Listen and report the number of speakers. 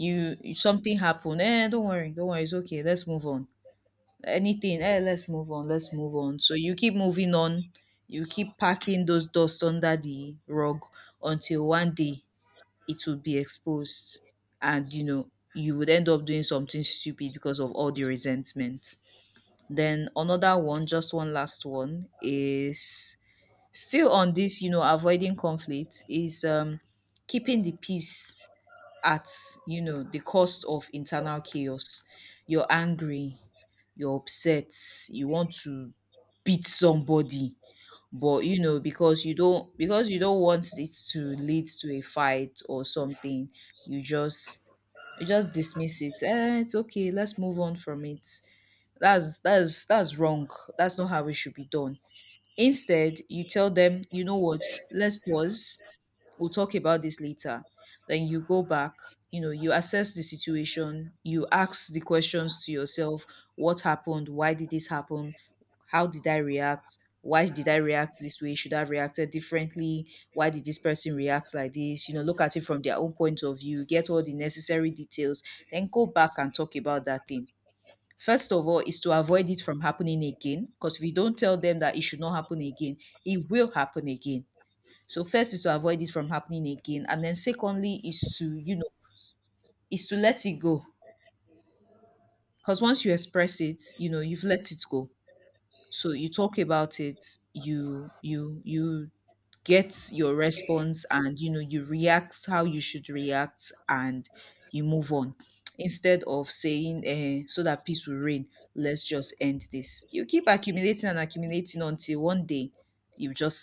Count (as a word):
one